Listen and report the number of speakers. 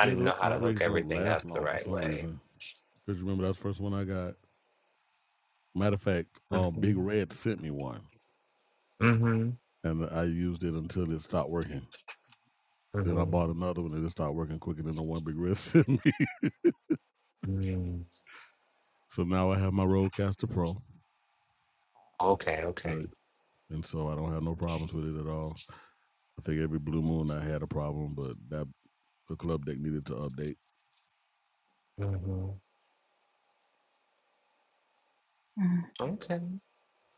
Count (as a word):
two